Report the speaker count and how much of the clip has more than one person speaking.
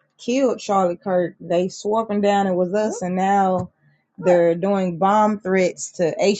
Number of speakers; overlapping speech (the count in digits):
1, no overlap